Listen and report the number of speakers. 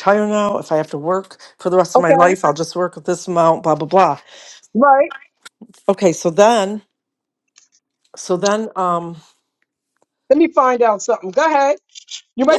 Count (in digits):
2